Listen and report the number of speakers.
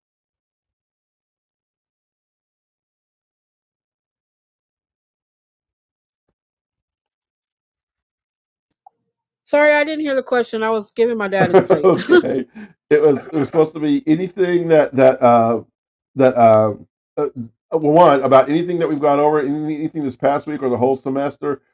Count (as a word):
two